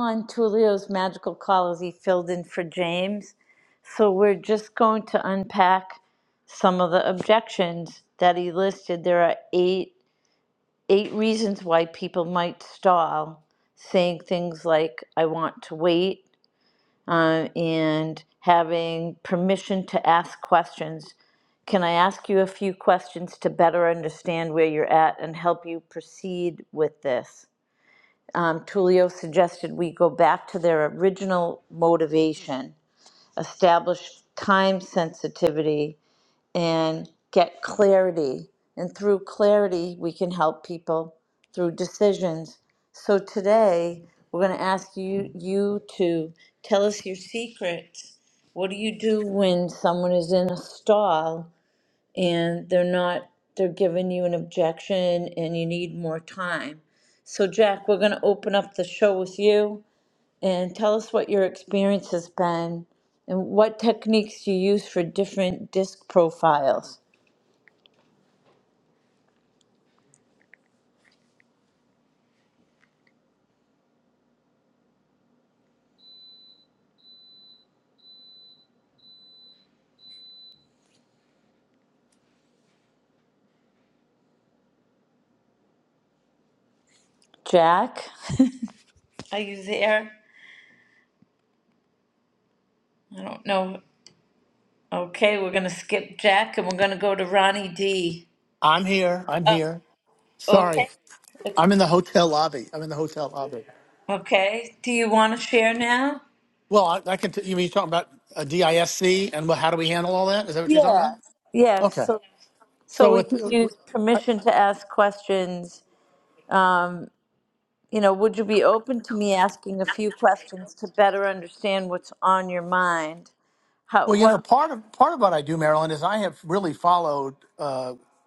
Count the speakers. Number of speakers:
2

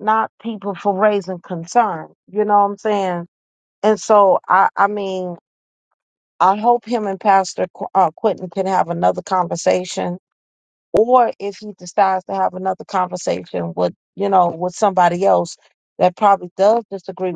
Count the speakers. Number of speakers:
1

